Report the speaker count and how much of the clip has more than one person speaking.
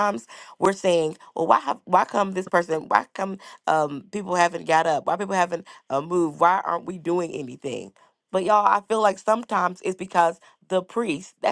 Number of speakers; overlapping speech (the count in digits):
1, no overlap